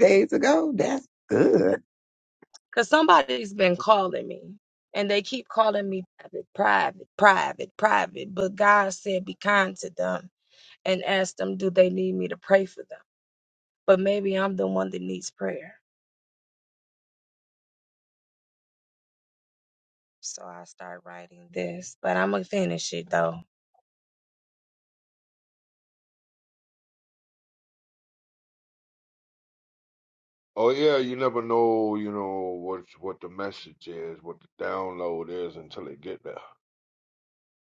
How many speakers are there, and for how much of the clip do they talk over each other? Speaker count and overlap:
three, no overlap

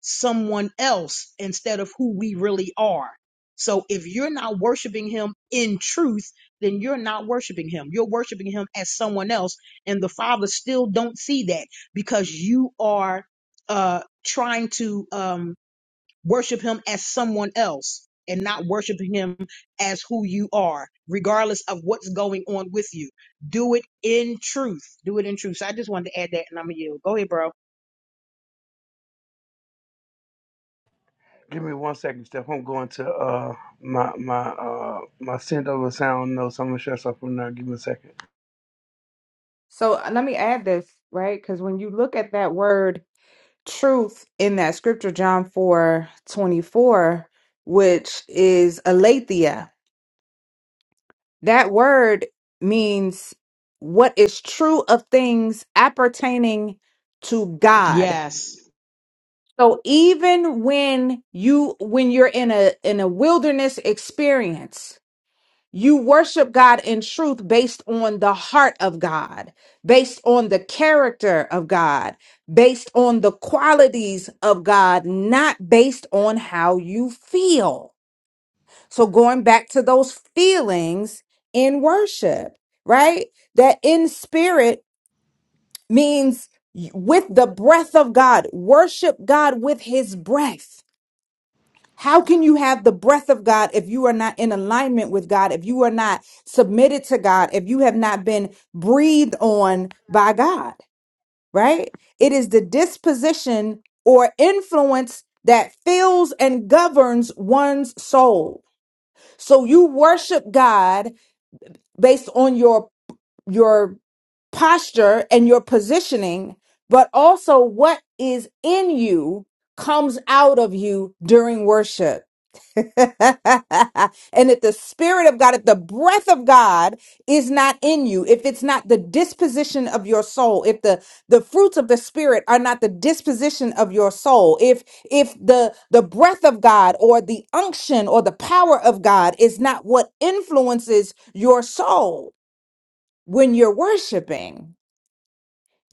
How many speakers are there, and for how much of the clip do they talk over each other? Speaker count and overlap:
three, under 1%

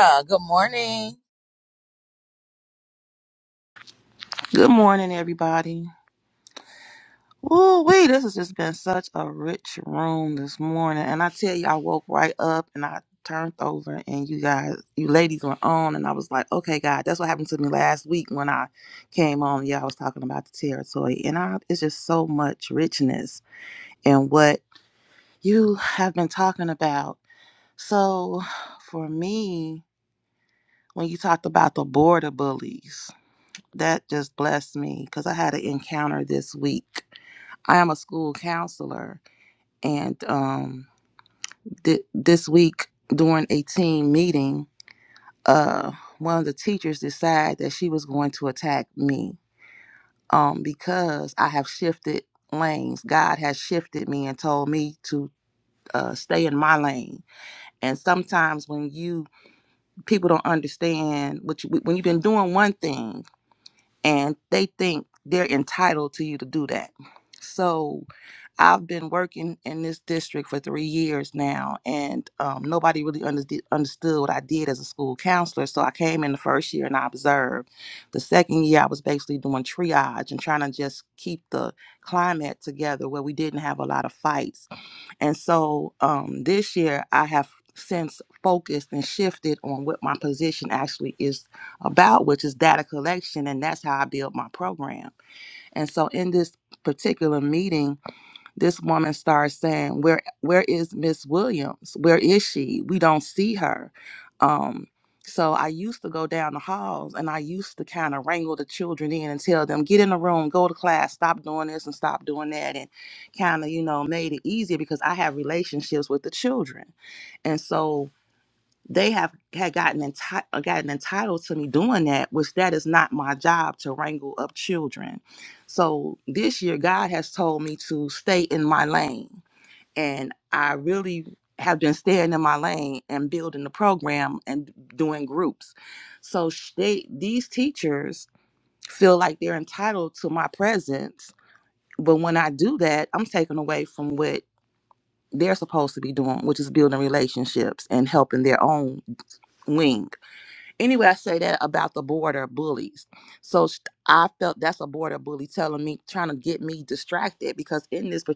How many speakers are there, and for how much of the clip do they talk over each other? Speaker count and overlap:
two, no overlap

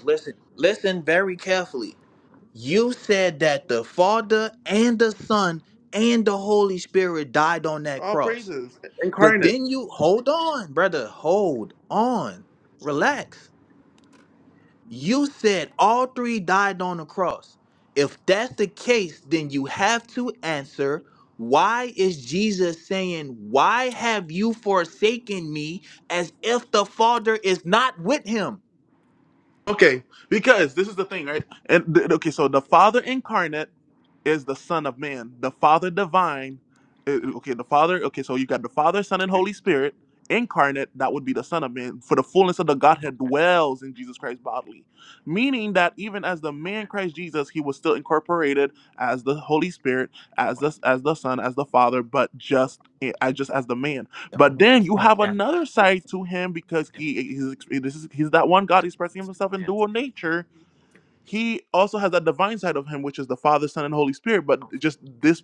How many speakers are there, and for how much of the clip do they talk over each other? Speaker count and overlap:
two, about 1%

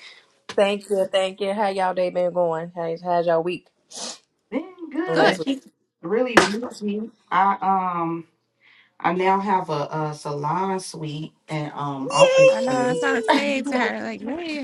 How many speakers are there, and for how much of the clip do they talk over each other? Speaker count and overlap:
three, about 10%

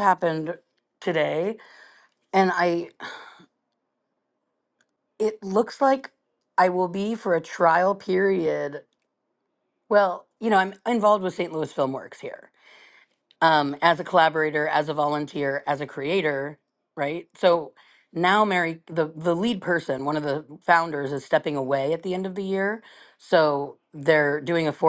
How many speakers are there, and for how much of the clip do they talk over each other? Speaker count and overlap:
one, no overlap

